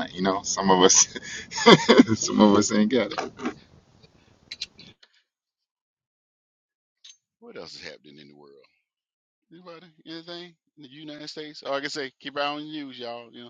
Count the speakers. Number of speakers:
two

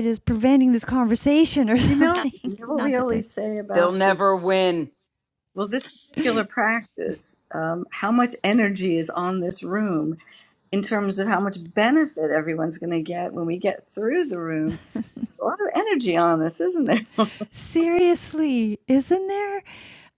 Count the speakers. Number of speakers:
three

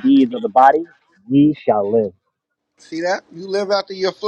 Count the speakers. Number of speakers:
two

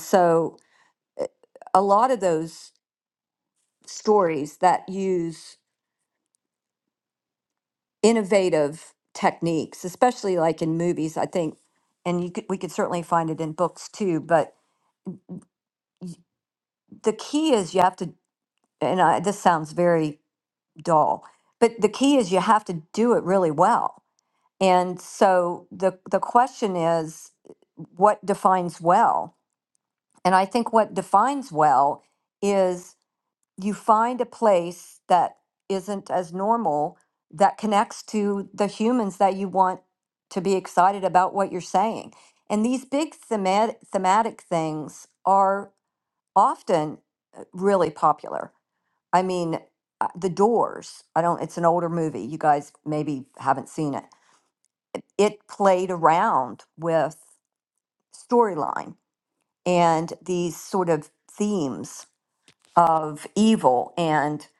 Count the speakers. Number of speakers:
one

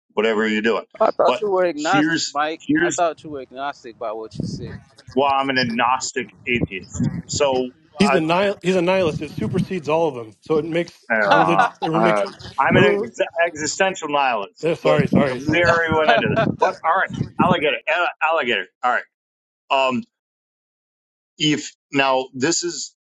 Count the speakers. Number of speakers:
three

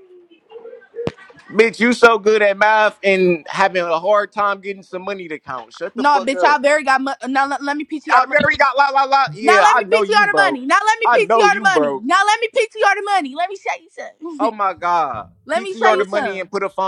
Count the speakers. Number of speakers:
two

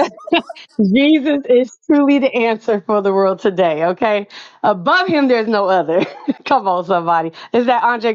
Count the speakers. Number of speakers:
one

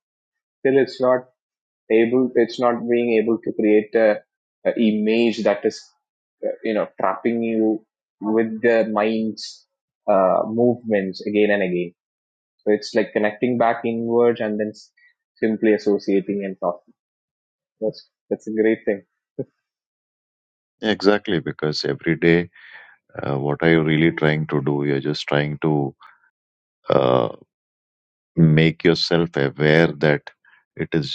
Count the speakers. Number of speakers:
two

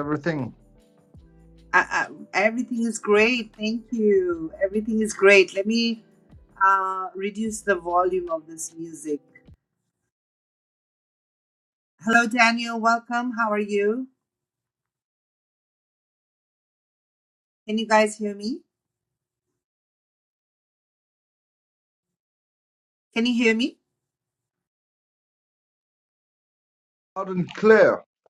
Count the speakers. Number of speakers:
two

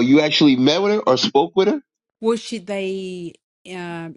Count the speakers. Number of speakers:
two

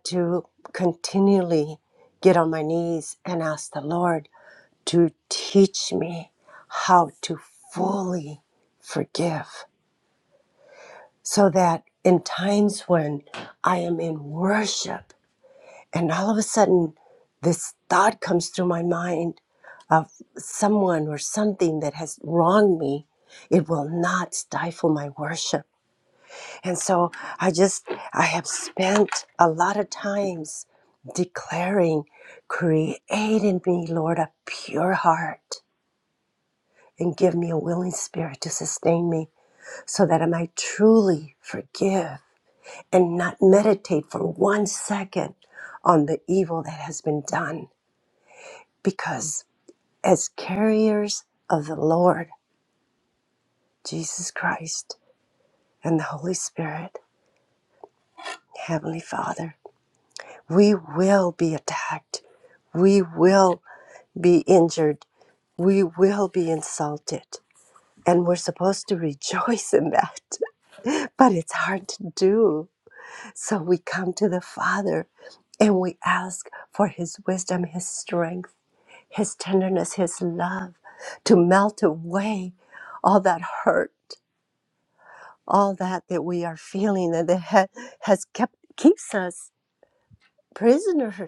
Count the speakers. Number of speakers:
one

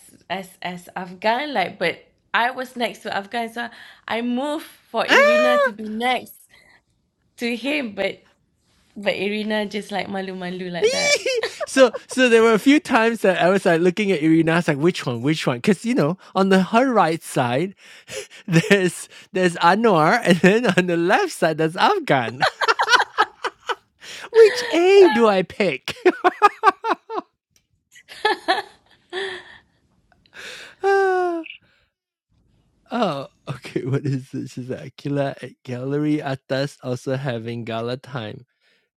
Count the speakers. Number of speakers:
two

